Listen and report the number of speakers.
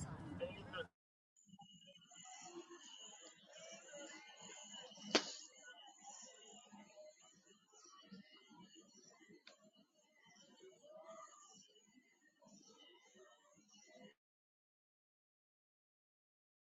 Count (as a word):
zero